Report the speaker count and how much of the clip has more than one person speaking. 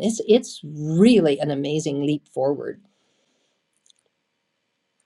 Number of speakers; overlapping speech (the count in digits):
1, no overlap